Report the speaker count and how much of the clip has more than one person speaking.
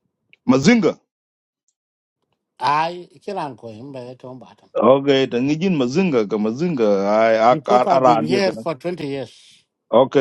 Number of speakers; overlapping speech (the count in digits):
2, about 7%